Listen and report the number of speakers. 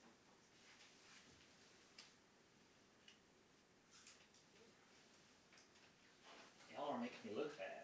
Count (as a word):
one